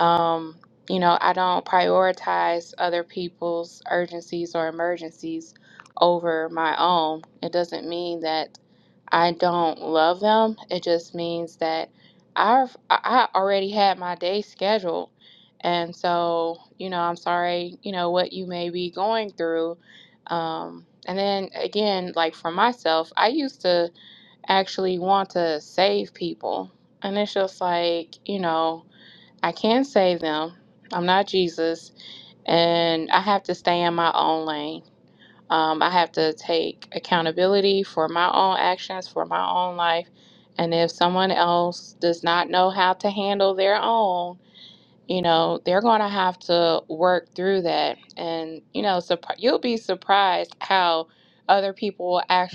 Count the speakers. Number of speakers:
1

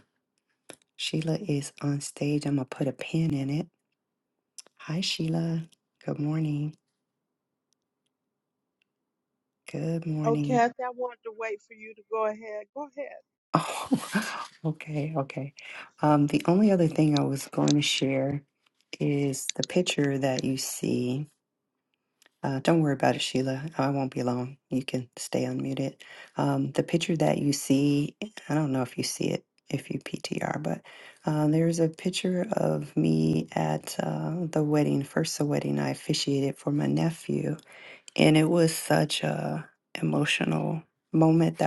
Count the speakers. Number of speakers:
2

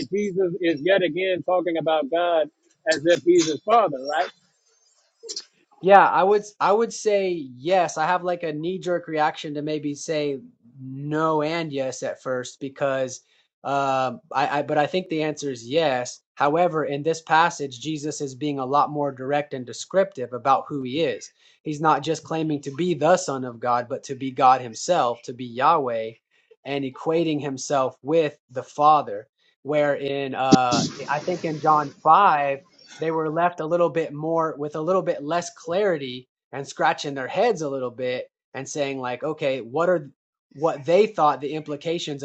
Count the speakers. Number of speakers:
2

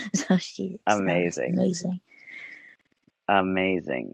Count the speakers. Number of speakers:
2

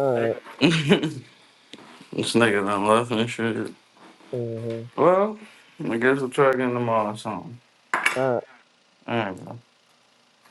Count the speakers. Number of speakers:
2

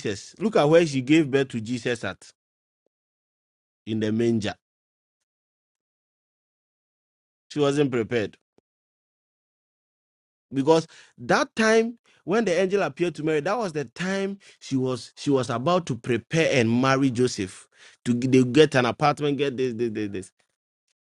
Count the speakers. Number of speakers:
1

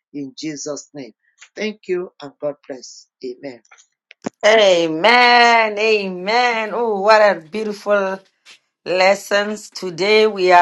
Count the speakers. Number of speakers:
2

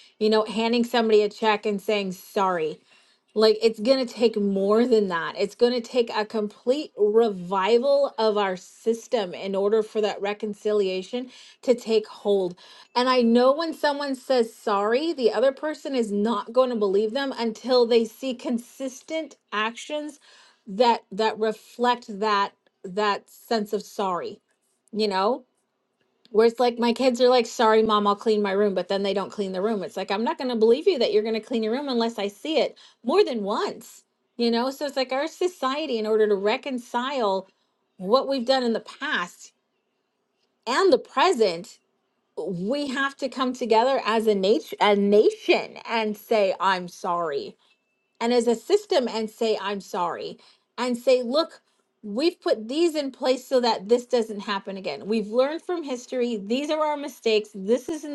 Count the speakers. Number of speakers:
1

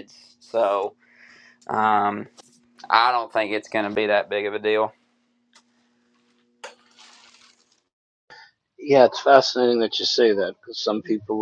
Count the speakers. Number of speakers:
2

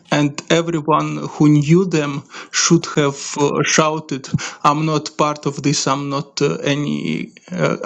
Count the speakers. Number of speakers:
1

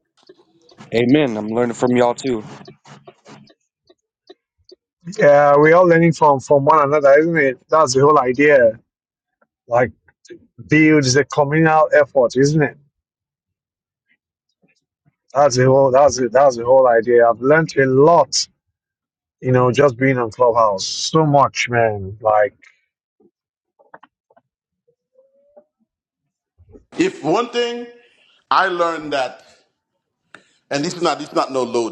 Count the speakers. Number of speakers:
3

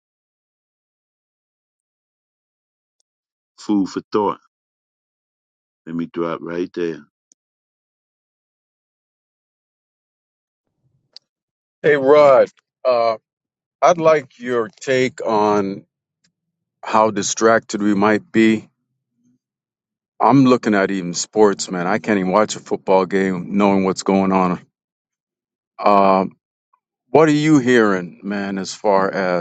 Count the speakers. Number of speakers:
2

